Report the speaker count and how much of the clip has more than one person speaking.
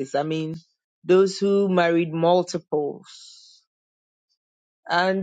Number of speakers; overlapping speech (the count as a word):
one, no overlap